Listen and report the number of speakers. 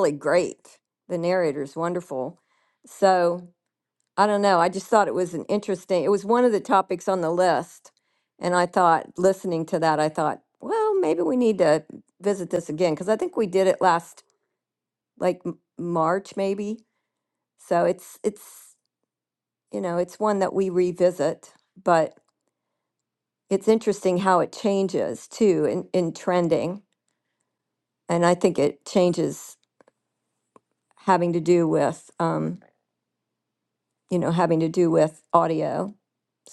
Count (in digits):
1